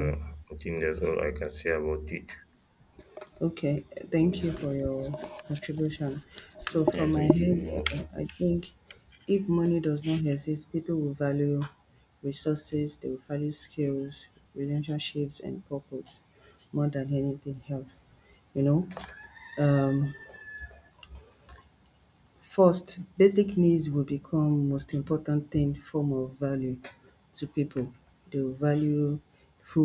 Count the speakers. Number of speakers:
two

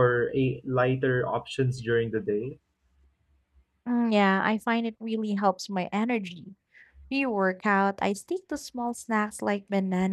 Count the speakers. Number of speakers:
two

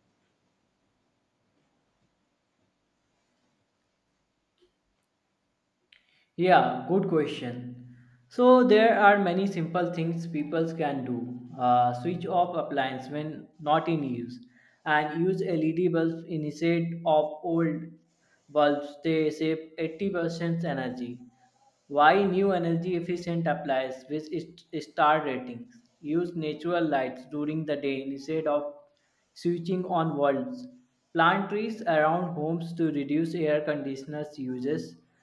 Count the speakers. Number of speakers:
one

